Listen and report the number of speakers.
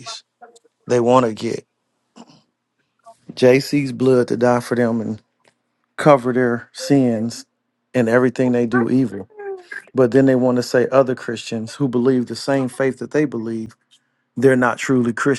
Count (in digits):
1